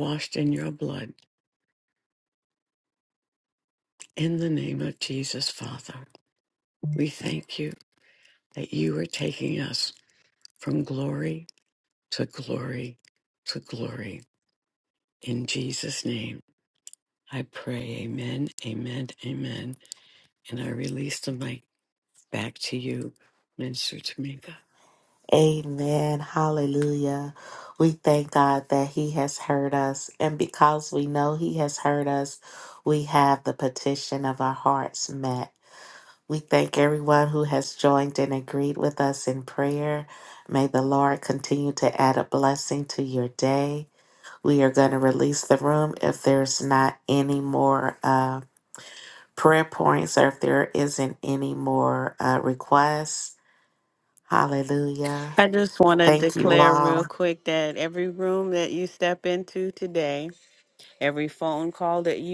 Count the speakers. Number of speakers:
three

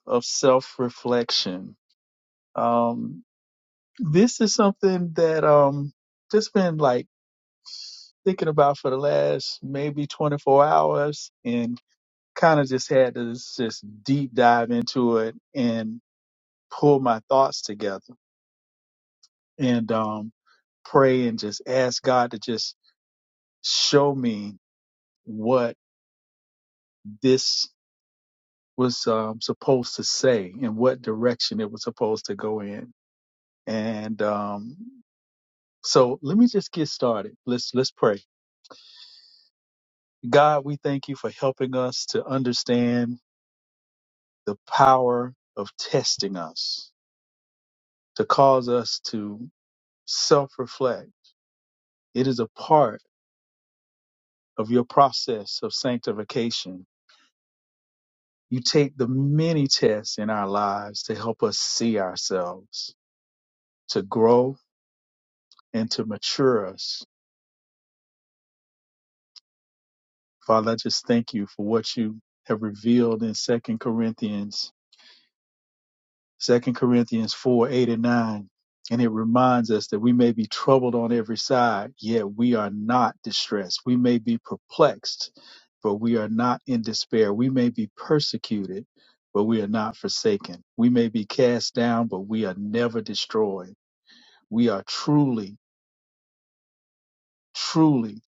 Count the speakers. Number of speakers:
one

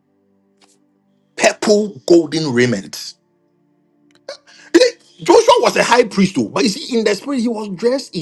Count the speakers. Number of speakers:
one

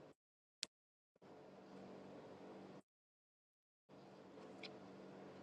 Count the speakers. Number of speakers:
zero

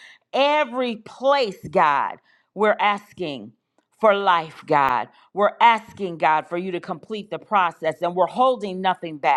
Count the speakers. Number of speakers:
one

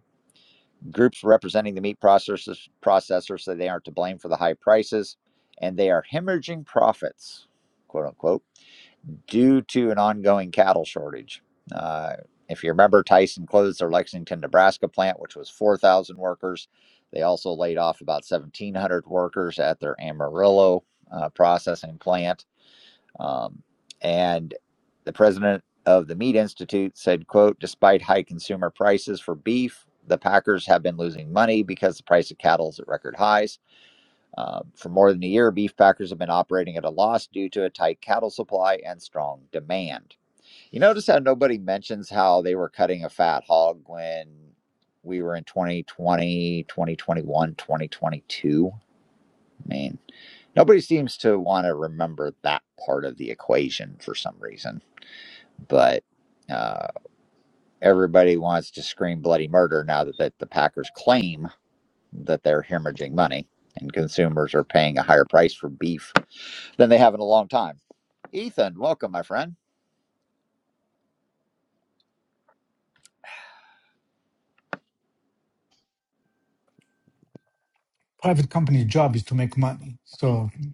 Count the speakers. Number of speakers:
two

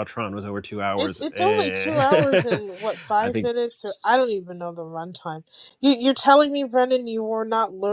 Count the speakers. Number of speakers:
two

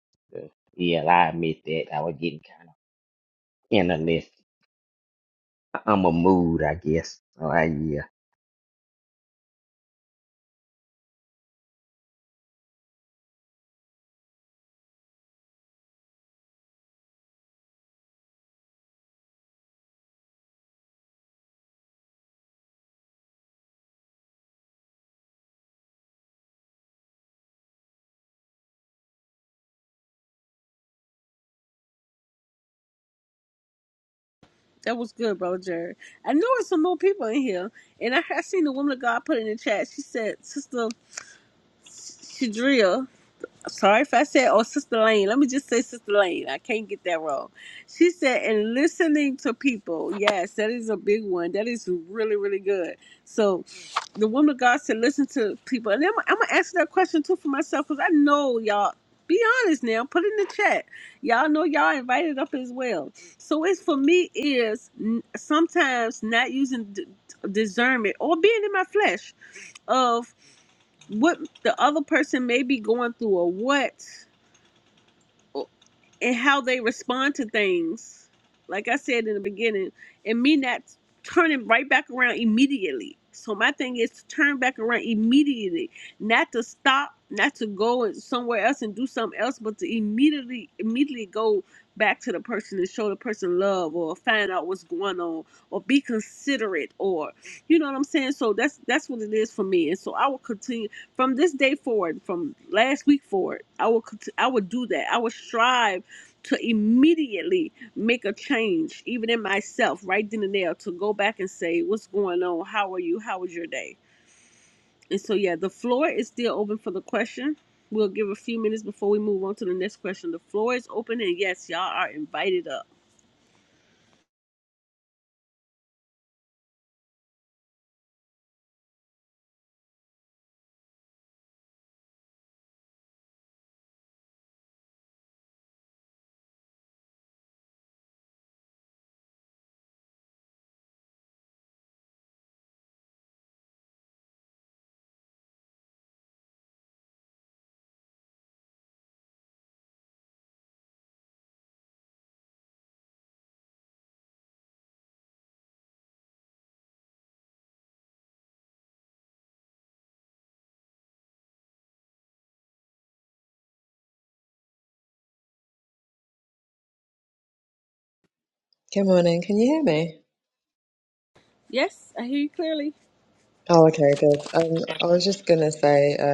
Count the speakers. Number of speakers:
three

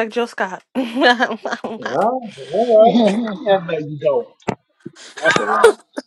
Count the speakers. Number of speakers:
three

